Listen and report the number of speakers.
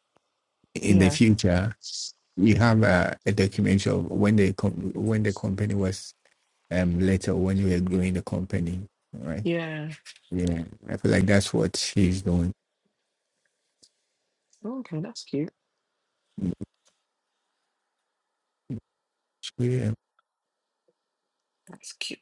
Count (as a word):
two